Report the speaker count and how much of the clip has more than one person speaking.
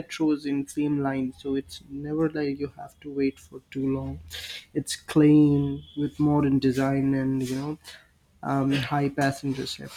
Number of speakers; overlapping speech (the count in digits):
1, no overlap